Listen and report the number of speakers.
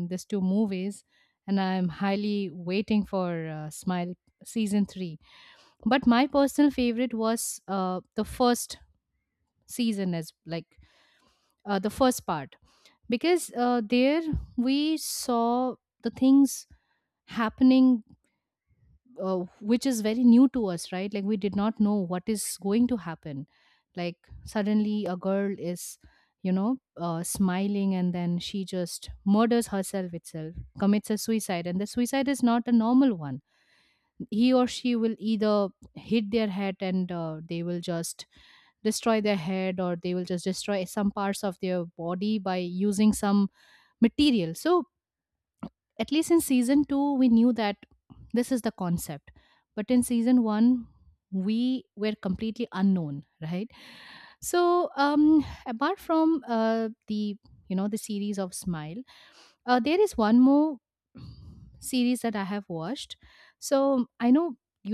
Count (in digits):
1